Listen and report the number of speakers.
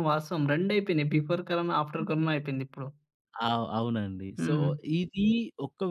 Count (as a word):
two